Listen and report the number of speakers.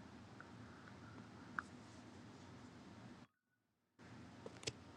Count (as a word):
zero